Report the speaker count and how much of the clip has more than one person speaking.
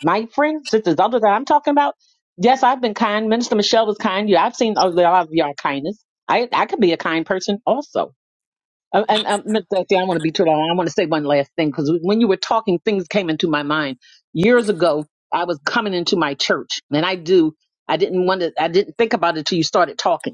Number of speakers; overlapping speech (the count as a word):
one, no overlap